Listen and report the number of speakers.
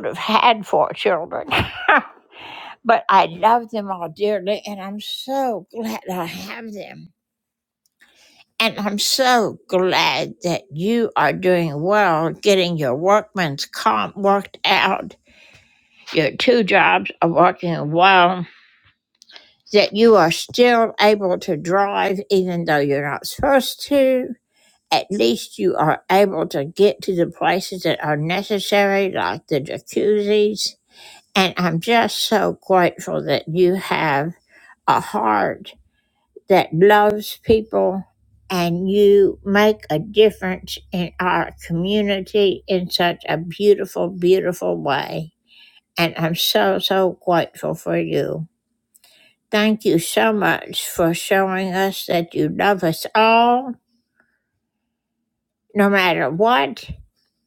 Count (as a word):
one